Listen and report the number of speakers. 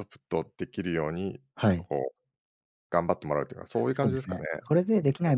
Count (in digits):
2